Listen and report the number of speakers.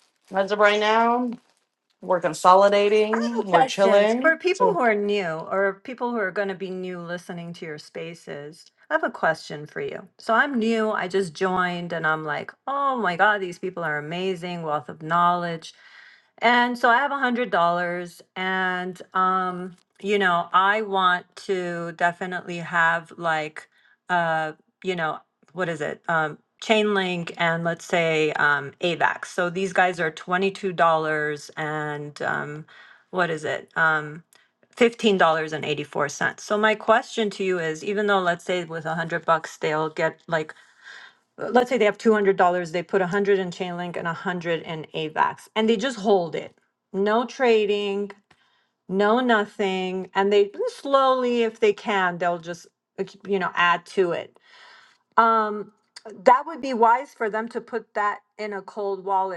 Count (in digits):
2